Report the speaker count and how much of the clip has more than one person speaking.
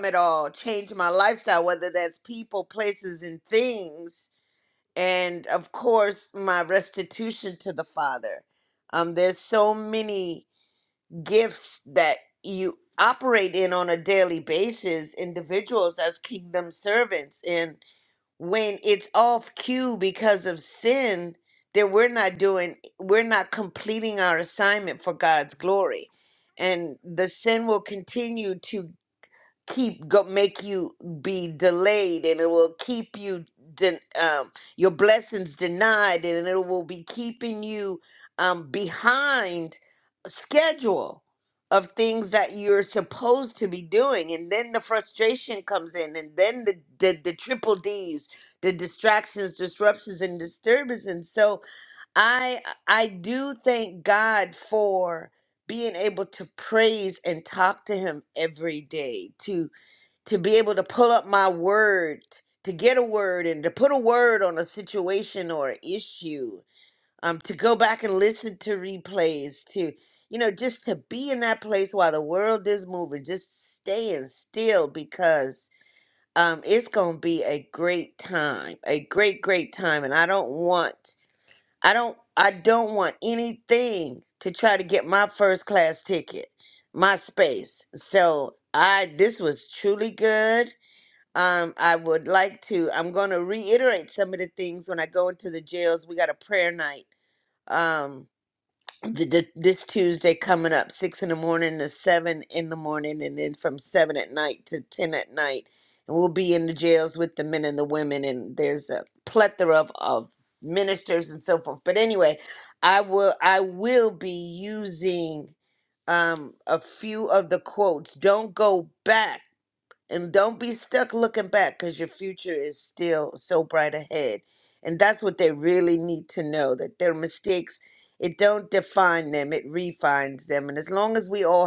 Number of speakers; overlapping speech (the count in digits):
1, no overlap